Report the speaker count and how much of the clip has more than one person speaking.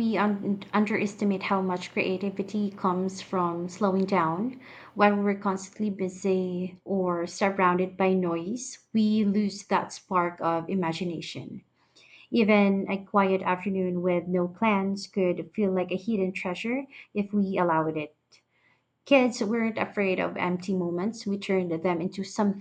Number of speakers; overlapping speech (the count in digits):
1, no overlap